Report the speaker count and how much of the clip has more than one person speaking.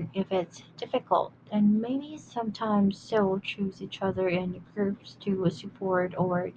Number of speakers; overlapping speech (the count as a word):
one, no overlap